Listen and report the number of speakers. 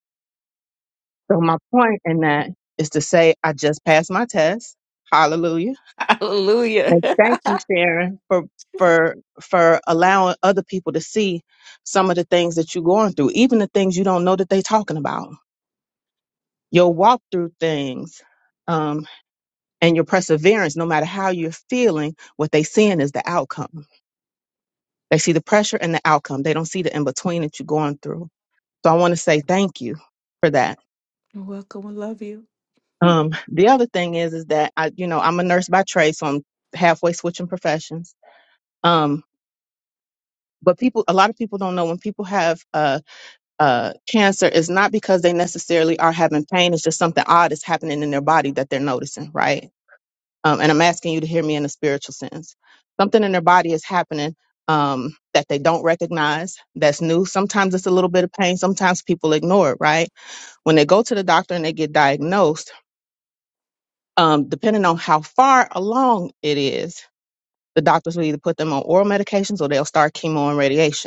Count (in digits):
2